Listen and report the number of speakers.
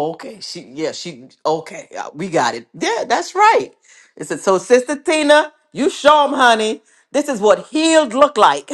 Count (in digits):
1